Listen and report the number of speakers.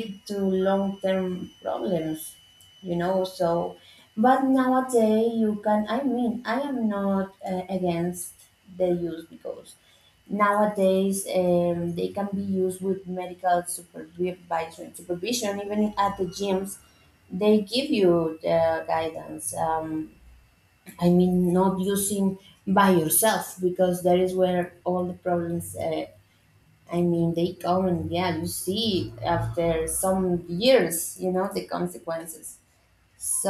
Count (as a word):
one